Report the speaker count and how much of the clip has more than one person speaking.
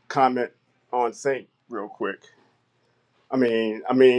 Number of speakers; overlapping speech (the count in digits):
1, no overlap